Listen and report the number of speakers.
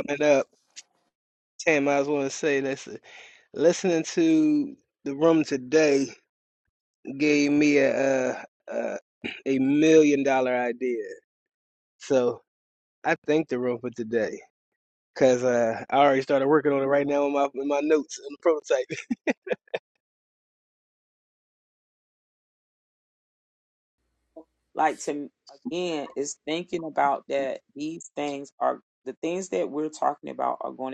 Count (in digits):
2